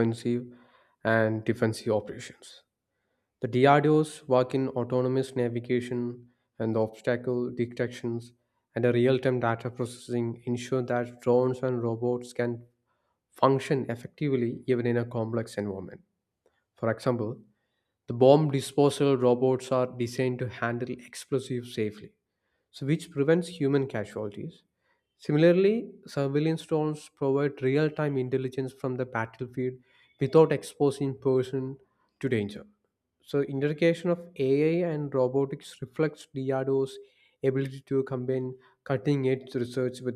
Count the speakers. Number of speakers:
1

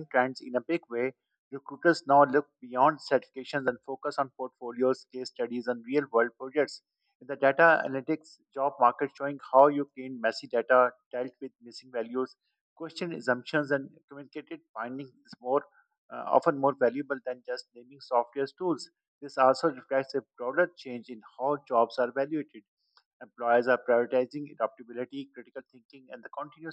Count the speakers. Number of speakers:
1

